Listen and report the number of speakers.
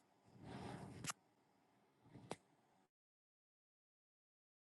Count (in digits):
0